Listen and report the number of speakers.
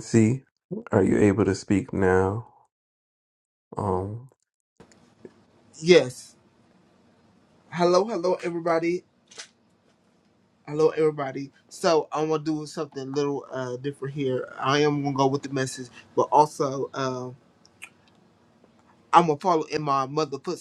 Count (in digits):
2